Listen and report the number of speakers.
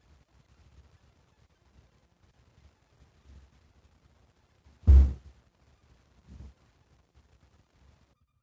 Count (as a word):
zero